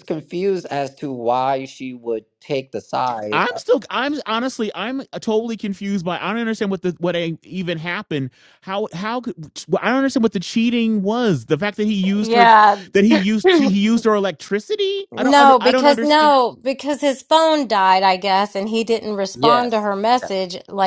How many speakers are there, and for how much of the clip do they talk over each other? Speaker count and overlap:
3, about 11%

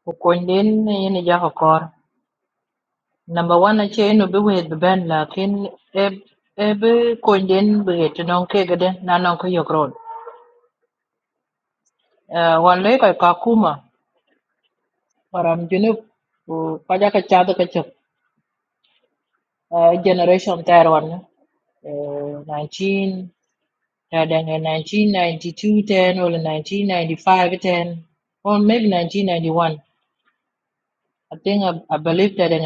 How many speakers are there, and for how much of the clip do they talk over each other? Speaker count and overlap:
1, no overlap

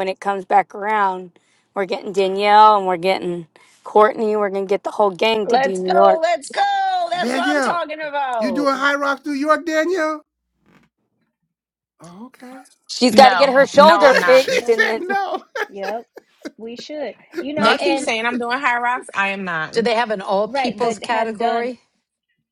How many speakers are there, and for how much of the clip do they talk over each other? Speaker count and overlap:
6, about 25%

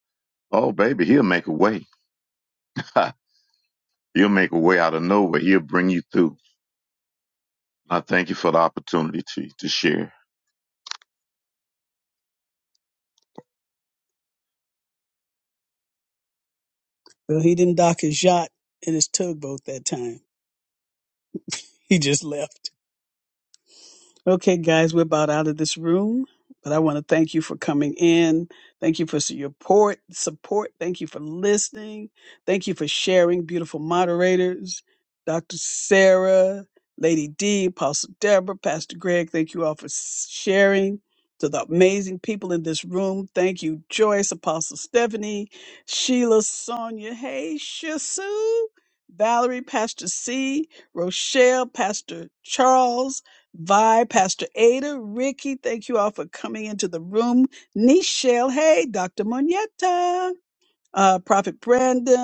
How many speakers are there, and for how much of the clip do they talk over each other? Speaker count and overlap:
2, no overlap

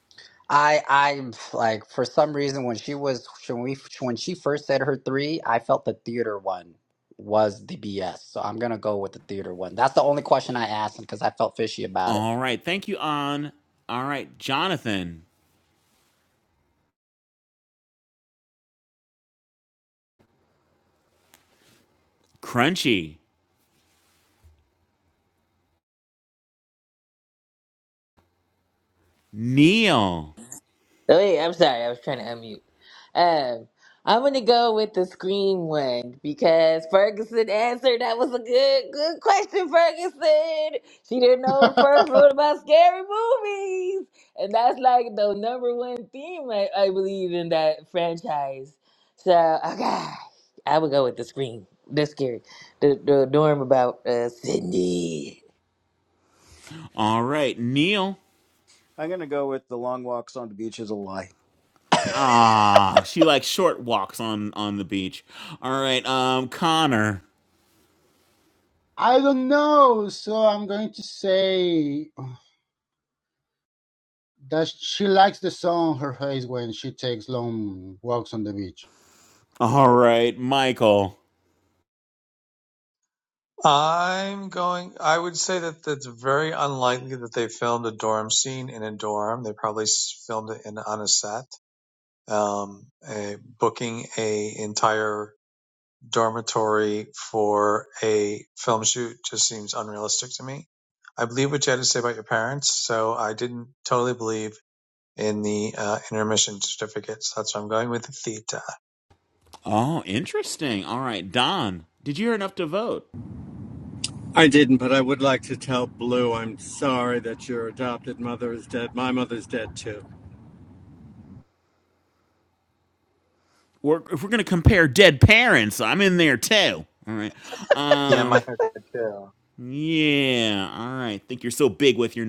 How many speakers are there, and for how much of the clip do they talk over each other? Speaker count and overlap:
7, under 1%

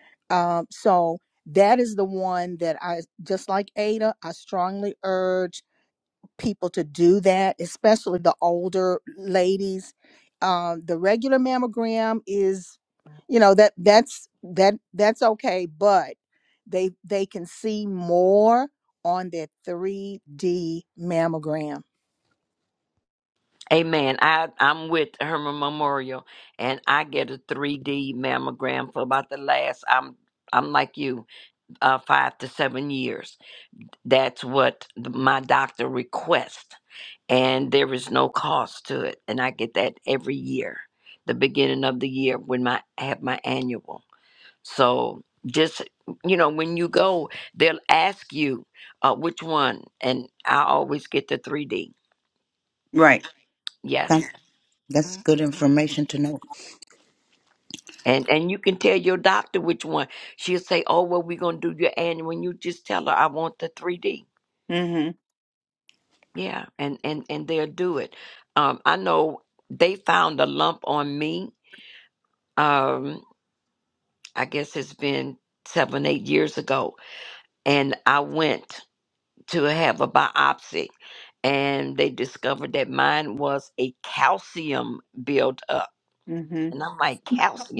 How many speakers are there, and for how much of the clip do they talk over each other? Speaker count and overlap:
4, under 1%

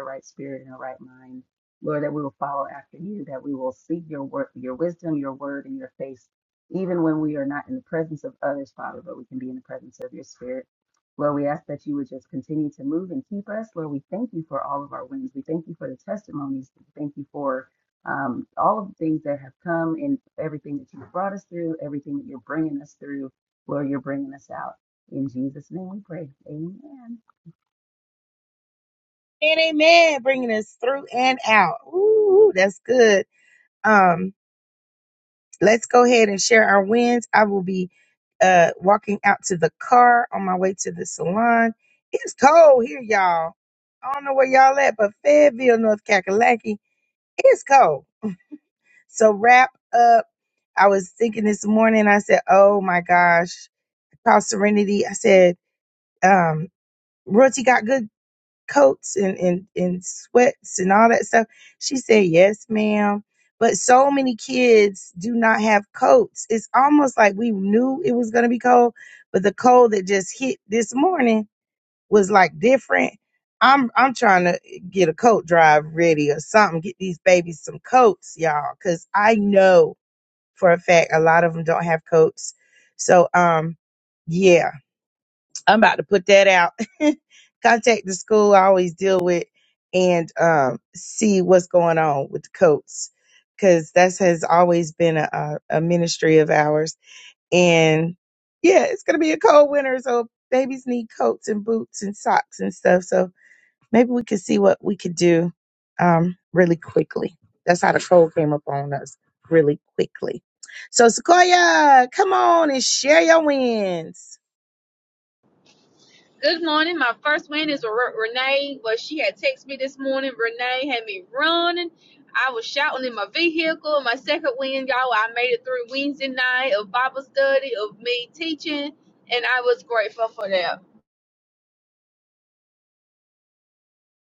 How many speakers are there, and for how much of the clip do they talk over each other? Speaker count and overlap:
3, no overlap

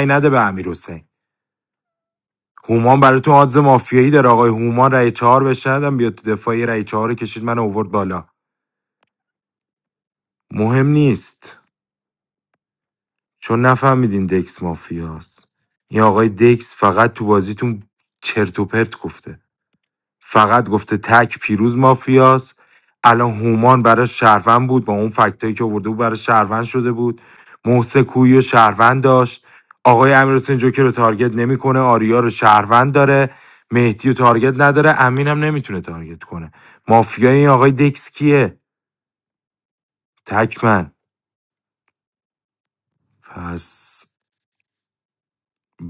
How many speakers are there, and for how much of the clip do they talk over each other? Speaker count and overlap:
1, no overlap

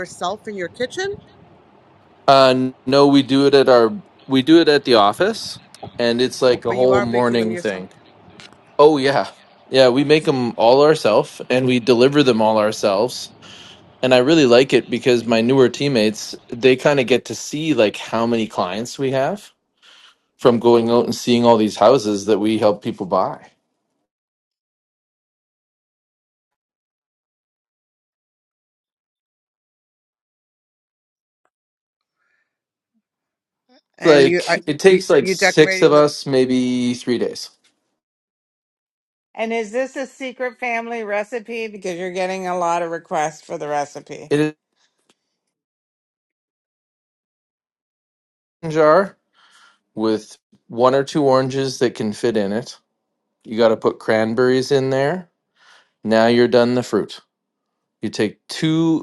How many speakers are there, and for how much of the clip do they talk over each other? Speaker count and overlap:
3, about 5%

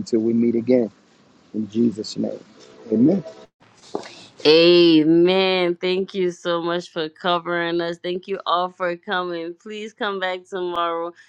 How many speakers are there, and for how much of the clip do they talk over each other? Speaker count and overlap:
2, no overlap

